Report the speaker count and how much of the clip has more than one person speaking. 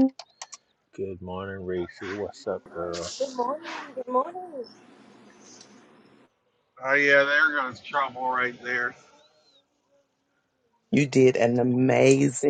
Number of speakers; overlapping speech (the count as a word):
four, no overlap